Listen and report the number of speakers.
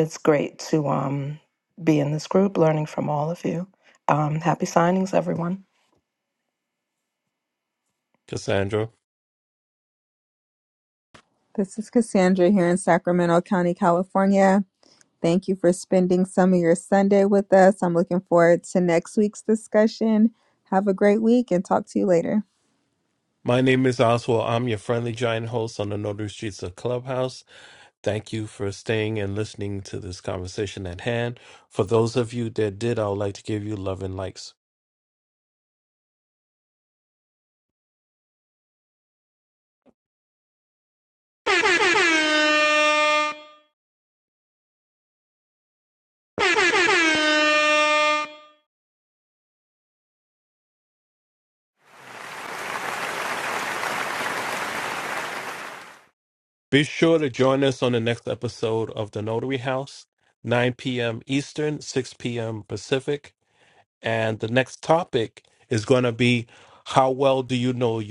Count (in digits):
3